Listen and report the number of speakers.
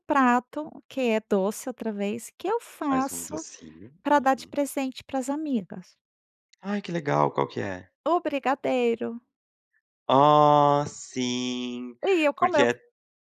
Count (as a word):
two